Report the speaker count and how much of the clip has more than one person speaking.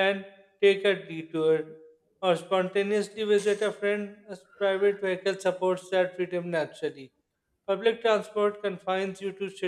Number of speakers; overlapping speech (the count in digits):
1, no overlap